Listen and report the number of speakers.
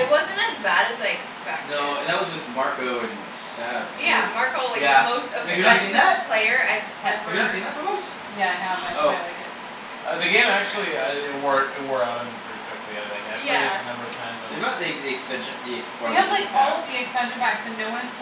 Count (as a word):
four